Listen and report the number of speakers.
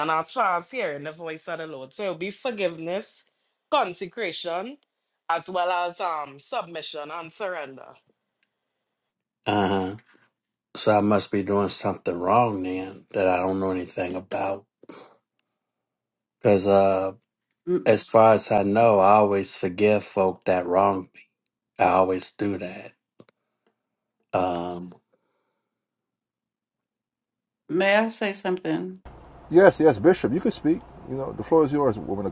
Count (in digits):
4